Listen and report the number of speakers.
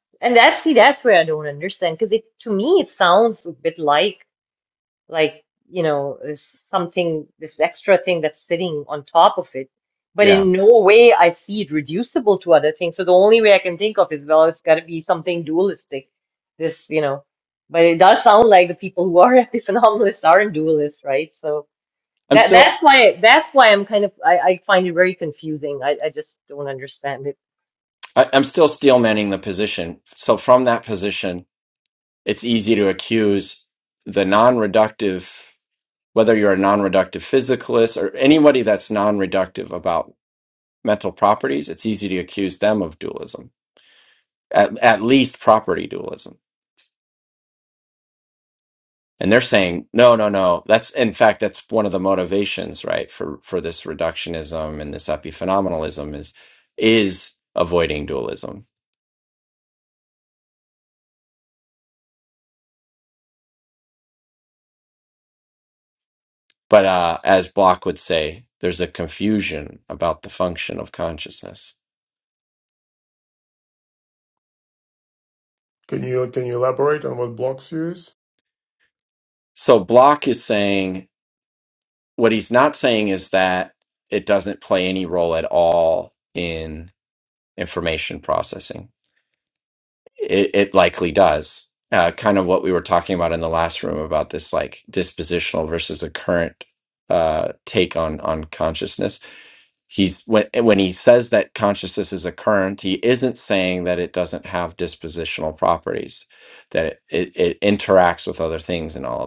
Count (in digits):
3